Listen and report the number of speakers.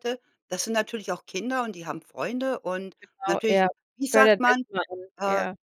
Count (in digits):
2